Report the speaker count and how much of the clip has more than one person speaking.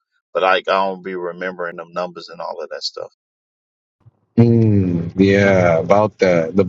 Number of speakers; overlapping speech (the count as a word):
two, no overlap